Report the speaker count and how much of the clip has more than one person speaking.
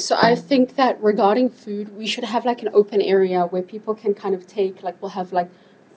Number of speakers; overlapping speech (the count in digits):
1, no overlap